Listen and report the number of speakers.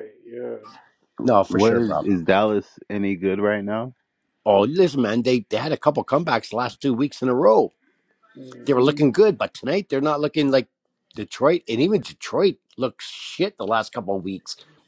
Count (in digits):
3